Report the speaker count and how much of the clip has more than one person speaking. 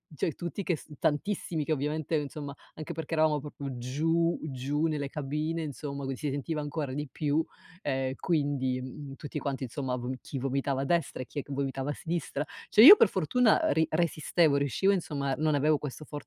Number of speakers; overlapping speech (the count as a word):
one, no overlap